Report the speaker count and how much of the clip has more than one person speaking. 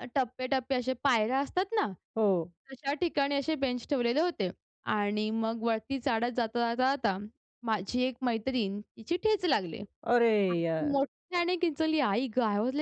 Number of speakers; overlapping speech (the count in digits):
2, about 4%